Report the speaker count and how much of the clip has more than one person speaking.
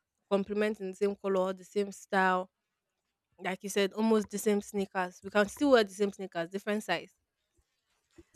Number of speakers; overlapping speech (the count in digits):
1, no overlap